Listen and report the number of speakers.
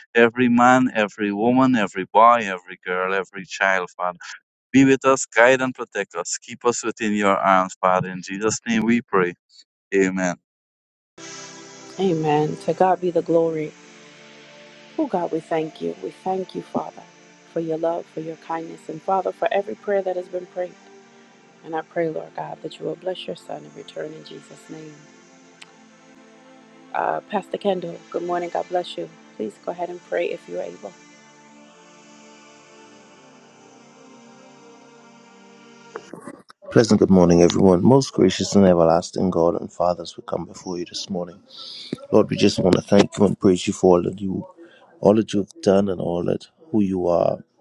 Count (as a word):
three